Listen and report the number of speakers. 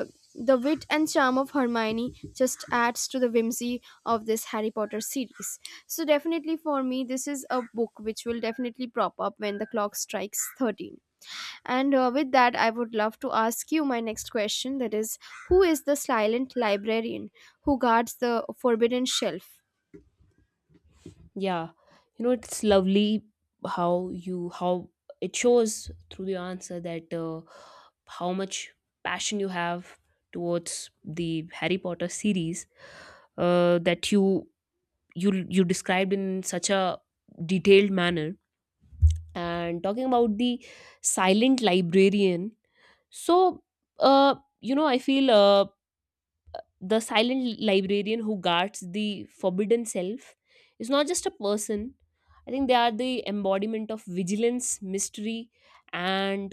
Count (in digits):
2